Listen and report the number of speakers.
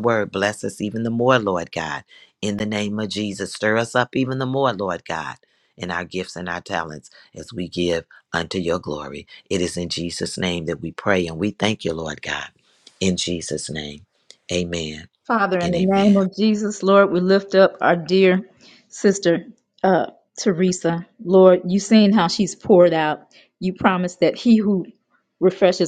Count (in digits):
2